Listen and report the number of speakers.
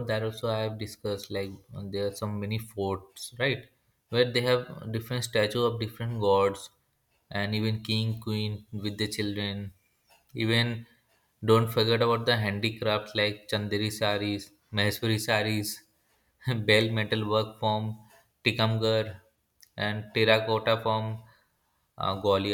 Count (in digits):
1